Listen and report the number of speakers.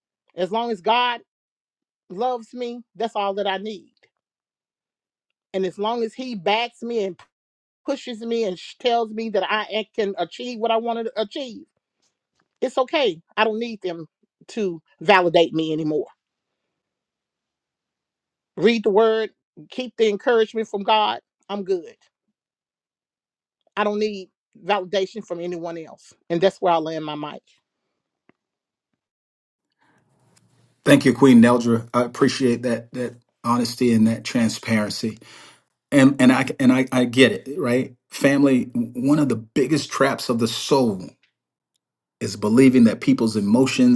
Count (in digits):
2